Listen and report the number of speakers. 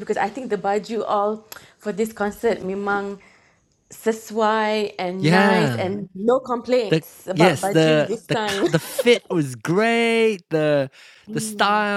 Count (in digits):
2